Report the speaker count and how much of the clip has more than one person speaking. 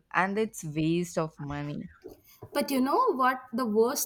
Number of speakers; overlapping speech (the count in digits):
2, no overlap